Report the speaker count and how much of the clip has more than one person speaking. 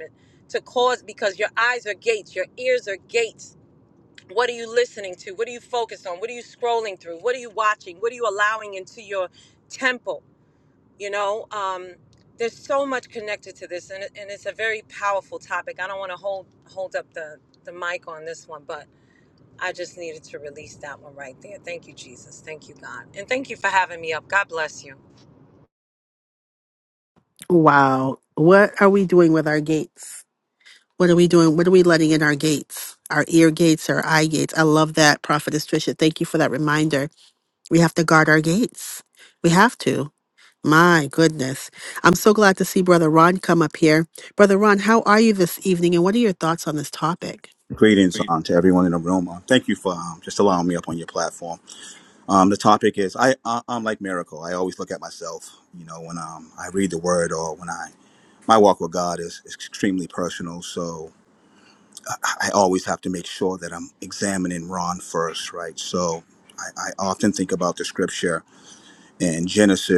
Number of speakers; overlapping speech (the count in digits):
3, no overlap